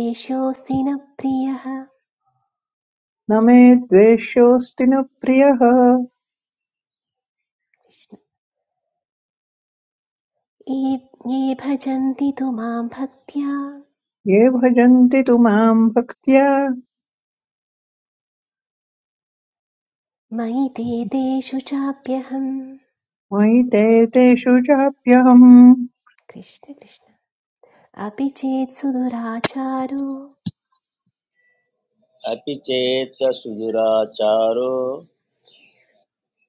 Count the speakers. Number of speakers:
three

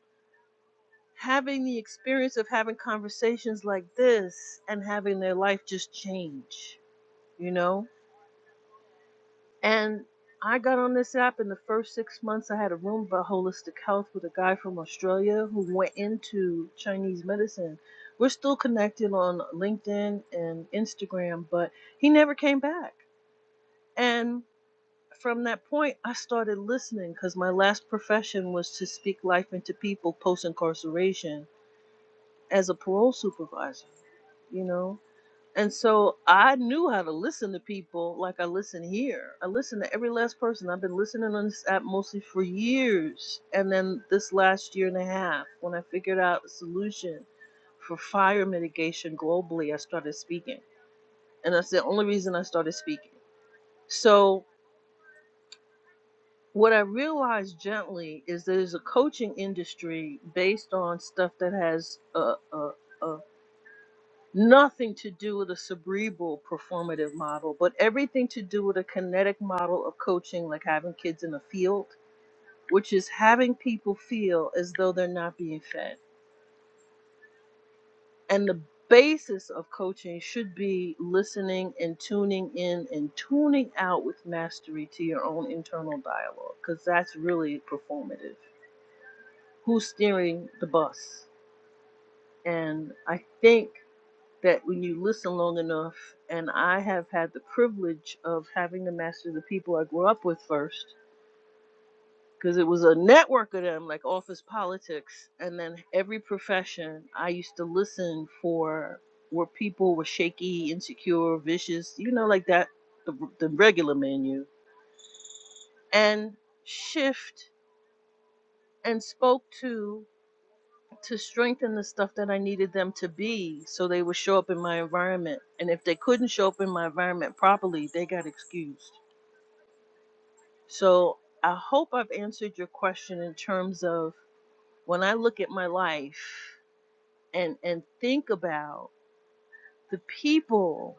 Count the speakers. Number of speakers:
one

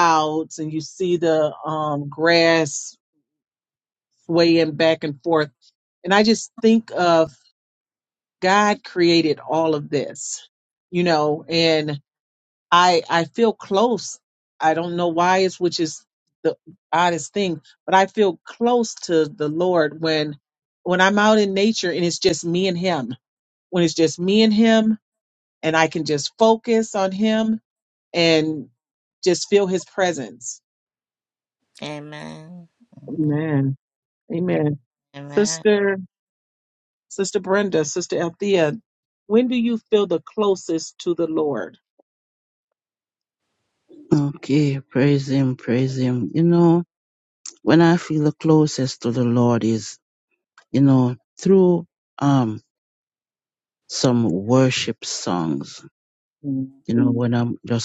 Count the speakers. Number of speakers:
three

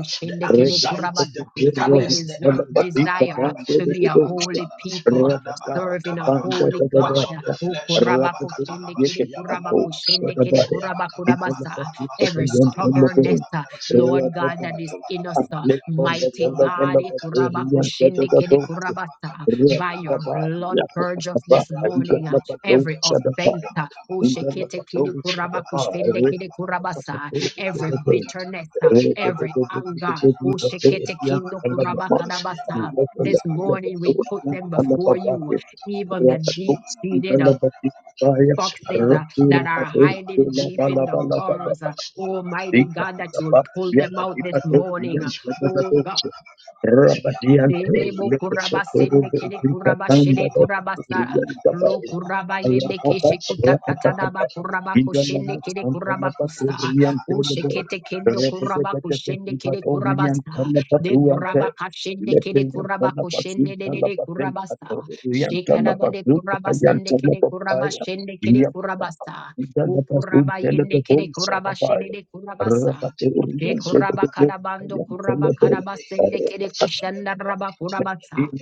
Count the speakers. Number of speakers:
three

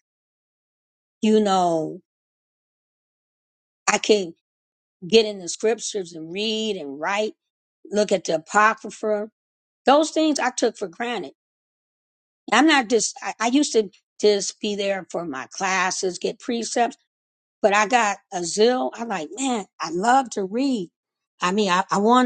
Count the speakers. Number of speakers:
one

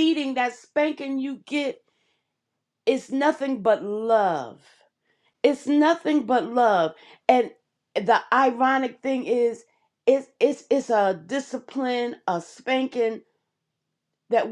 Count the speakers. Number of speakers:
one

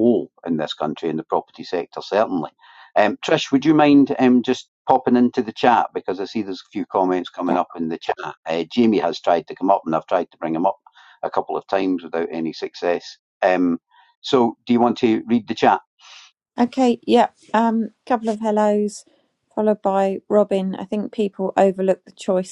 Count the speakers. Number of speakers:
two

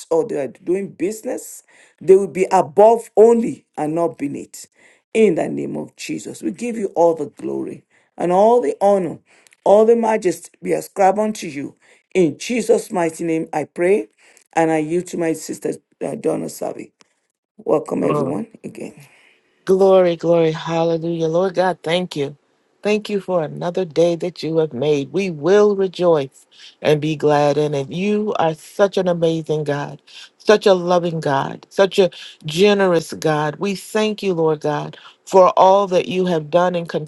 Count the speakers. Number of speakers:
two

